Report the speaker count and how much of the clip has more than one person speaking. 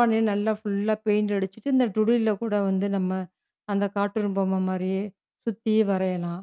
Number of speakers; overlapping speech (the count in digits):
1, no overlap